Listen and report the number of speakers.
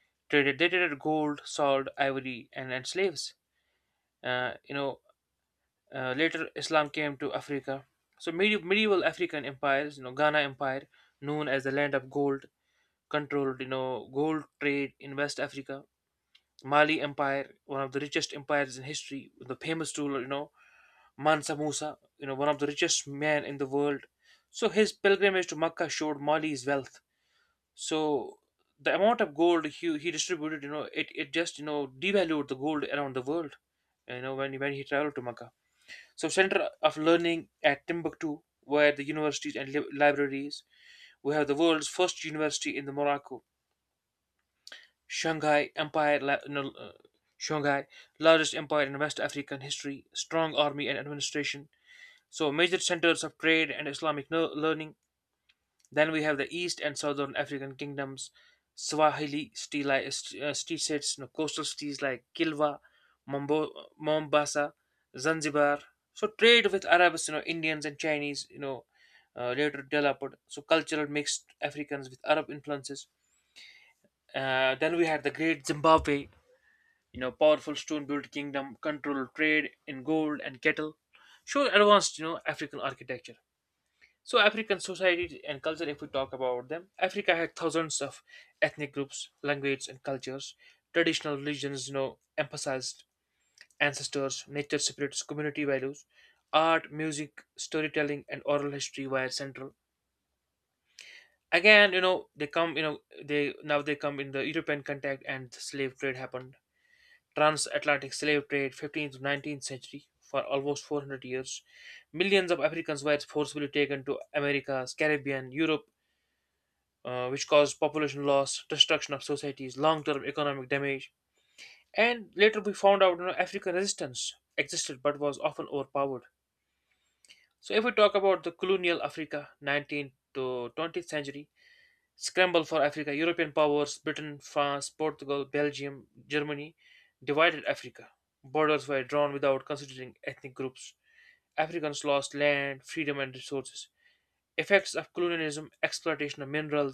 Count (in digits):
1